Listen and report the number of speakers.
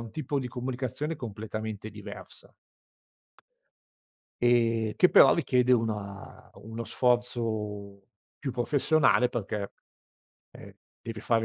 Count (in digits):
1